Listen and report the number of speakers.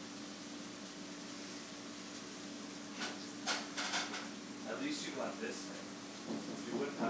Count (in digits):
1